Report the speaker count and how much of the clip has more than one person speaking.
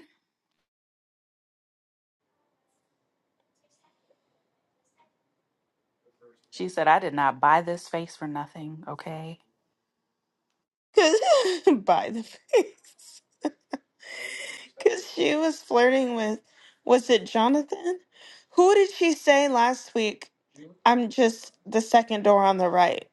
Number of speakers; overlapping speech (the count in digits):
2, no overlap